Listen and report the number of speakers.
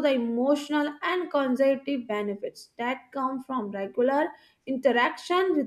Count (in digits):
1